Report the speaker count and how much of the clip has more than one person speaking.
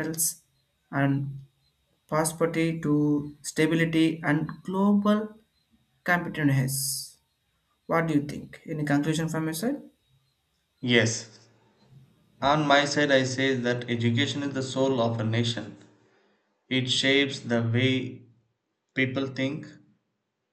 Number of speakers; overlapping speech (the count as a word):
two, no overlap